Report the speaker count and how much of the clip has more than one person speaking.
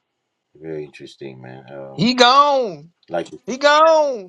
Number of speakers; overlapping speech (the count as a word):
two, about 2%